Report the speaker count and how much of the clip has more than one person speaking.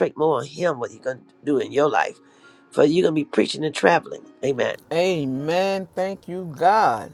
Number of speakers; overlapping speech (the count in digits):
2, no overlap